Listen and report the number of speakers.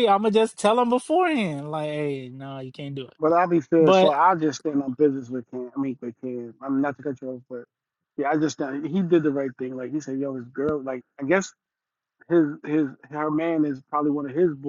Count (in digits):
2